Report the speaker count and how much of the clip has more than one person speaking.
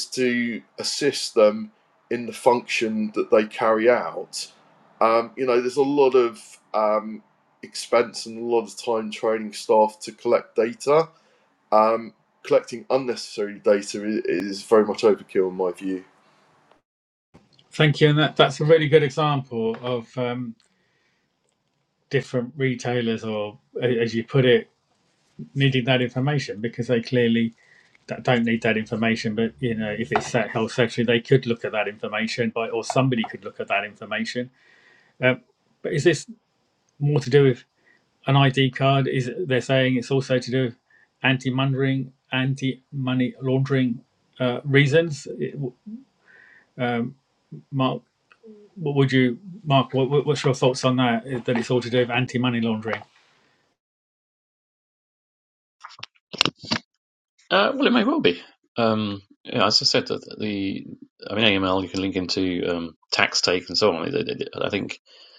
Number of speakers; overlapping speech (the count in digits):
3, no overlap